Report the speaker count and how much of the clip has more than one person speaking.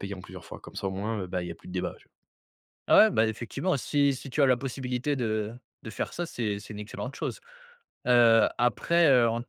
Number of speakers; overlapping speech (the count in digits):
2, no overlap